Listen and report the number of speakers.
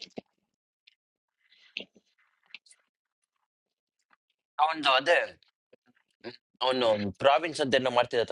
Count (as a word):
one